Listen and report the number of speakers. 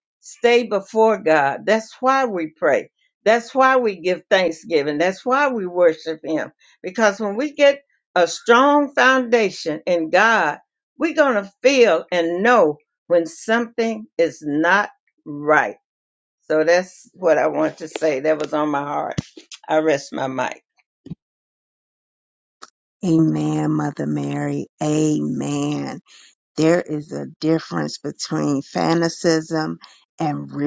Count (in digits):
2